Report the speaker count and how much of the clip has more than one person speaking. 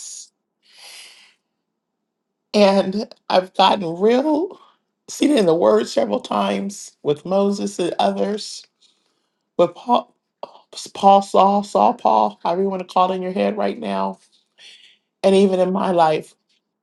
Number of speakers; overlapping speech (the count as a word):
one, no overlap